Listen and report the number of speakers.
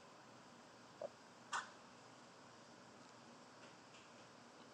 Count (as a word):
zero